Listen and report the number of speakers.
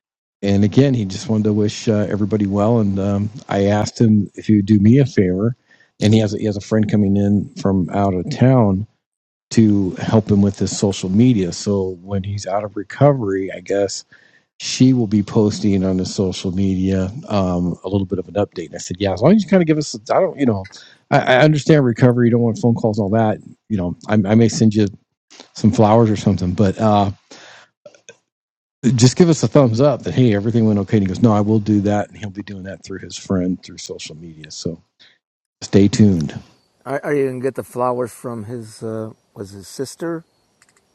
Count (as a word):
two